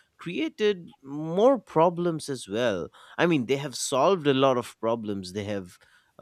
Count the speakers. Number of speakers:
1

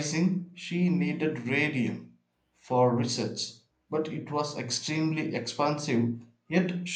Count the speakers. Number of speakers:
1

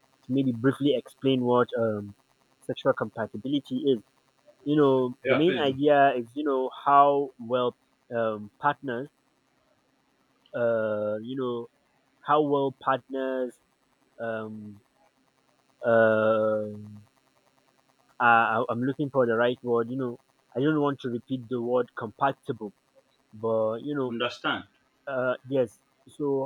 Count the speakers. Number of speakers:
2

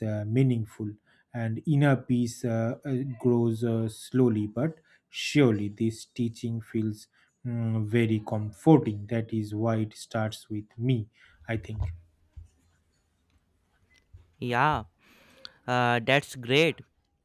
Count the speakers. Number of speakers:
2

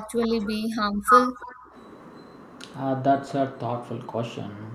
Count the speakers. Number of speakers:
2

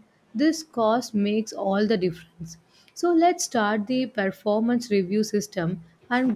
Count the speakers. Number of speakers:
1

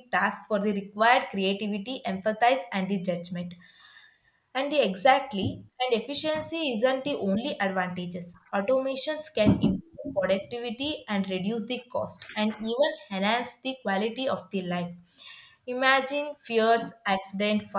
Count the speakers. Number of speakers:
1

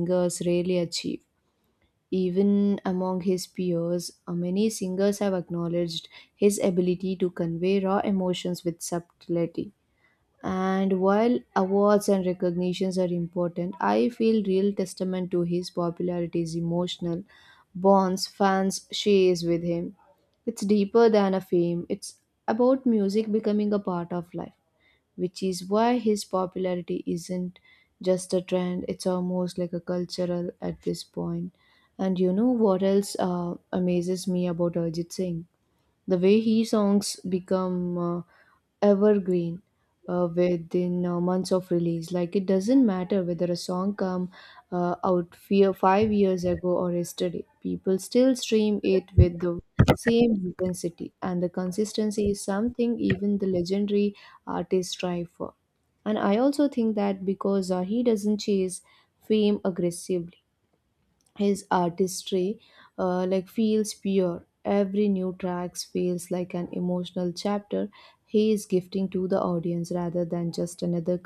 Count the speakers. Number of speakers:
1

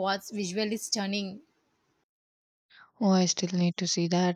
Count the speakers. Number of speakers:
2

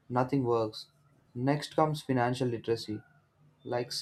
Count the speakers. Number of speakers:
1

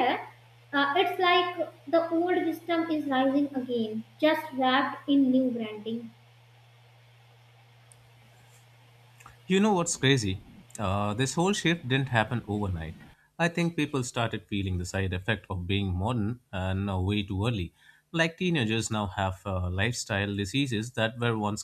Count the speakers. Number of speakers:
2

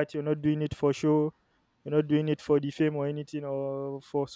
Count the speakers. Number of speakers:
1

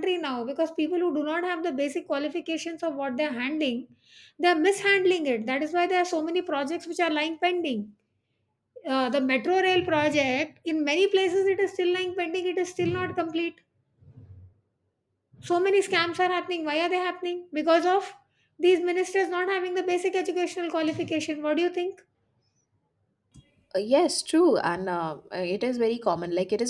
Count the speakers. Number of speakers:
2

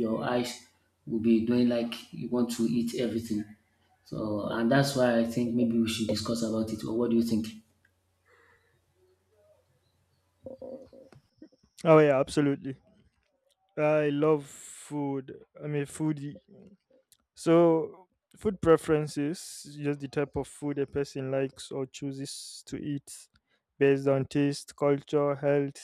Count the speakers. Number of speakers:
2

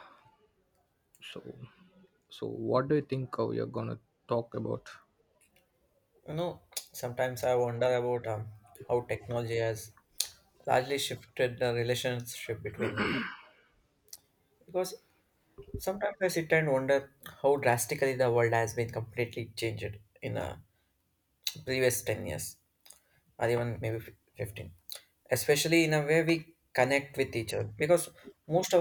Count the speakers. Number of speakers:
2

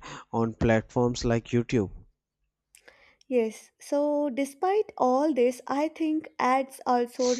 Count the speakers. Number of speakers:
2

